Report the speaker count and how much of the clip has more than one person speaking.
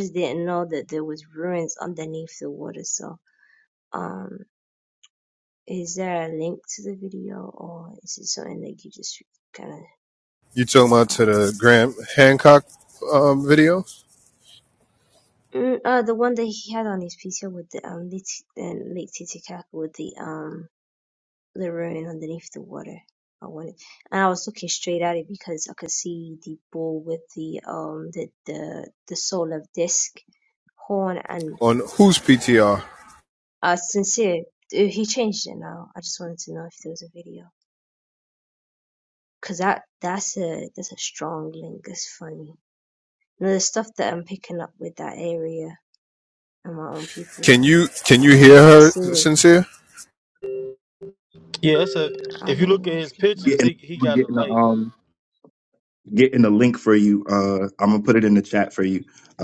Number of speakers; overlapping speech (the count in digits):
4, about 5%